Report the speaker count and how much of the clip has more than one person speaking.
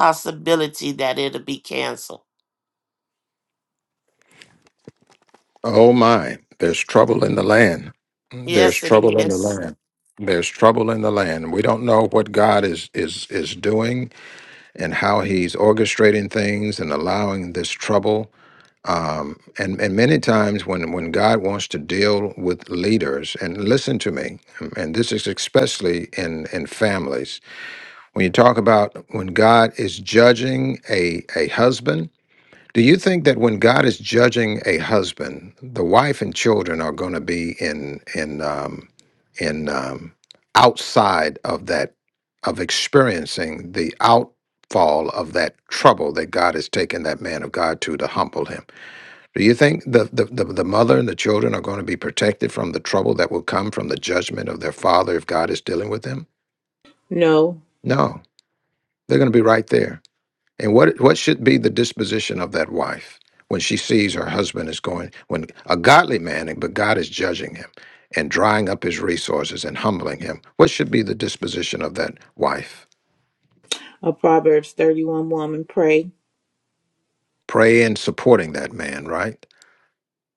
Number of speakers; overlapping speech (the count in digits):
3, about 1%